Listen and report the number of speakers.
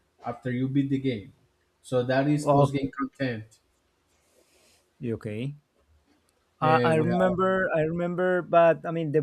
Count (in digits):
2